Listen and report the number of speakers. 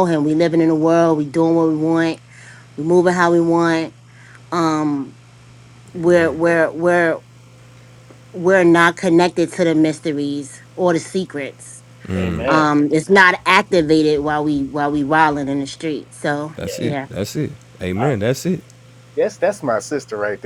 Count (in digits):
3